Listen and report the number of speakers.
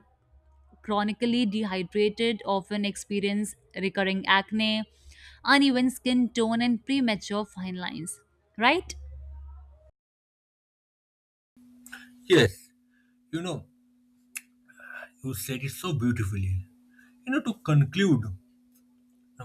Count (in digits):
2